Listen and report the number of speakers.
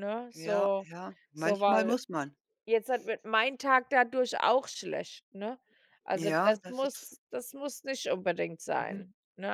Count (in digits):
2